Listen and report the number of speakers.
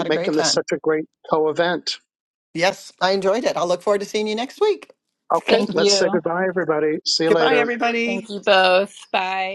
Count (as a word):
three